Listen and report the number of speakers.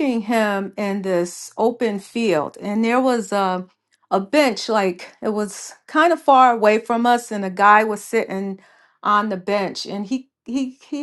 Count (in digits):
1